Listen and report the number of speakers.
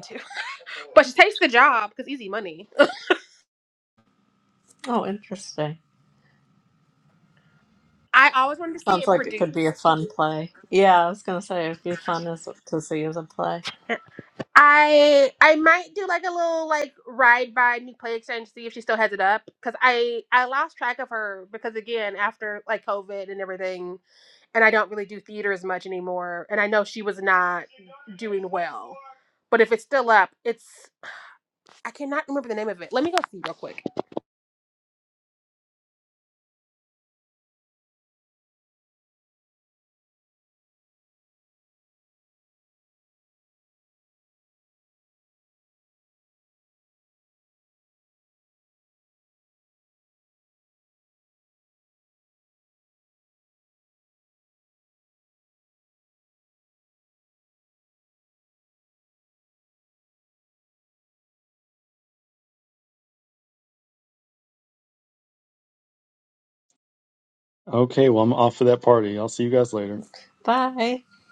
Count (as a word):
three